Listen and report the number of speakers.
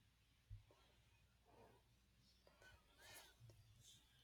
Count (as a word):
zero